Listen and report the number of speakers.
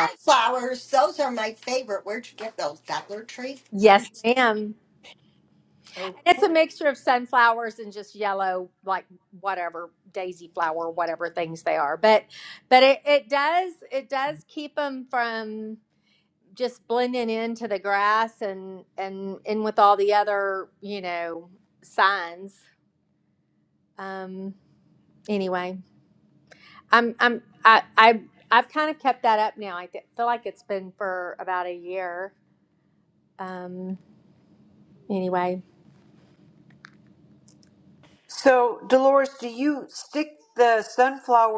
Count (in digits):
3